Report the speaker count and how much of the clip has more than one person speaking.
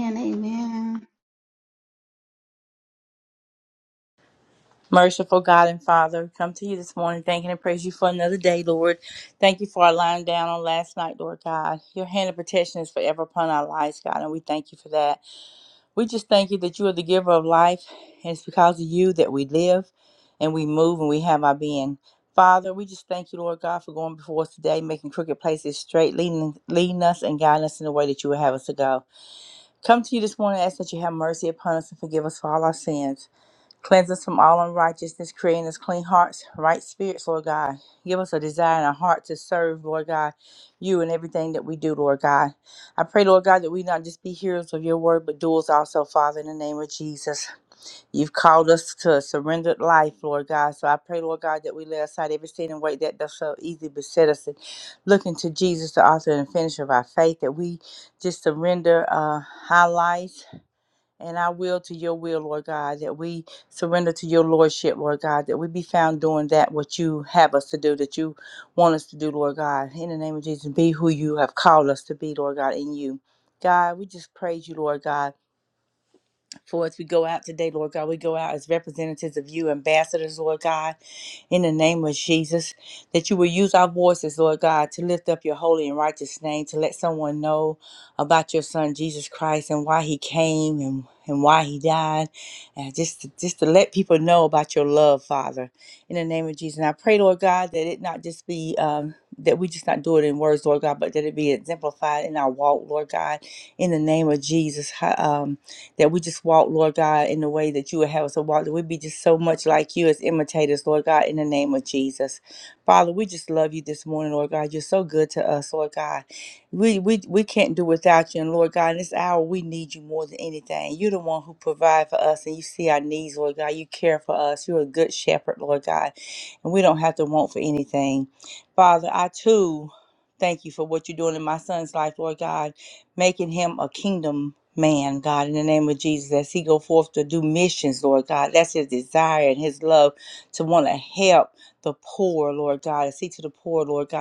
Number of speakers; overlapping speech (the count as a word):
two, no overlap